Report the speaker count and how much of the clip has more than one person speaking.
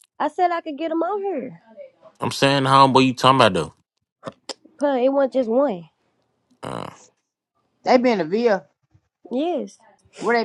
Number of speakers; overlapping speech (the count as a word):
three, no overlap